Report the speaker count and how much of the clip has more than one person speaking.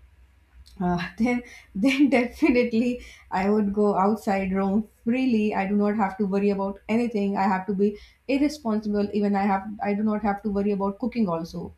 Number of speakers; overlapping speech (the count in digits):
1, no overlap